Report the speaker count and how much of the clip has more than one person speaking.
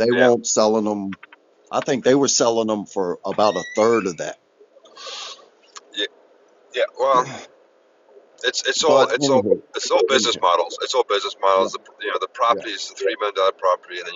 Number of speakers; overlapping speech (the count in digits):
2, about 11%